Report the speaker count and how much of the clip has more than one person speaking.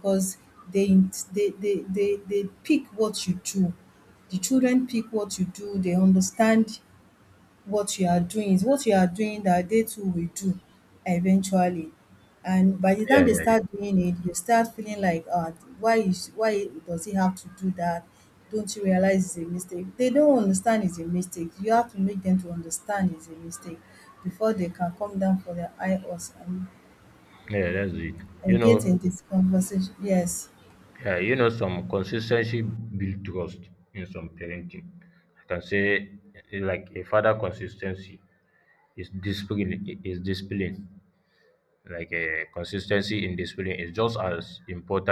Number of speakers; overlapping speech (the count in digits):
2, about 2%